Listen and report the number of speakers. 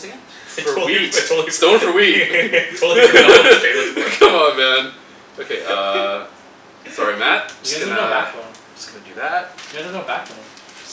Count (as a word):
three